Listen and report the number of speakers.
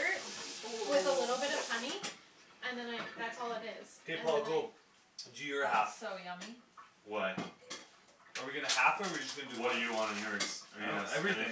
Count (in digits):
4